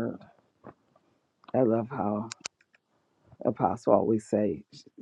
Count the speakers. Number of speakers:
one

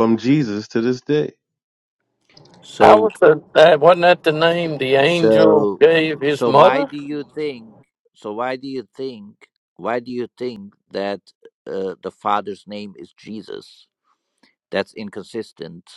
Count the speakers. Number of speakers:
three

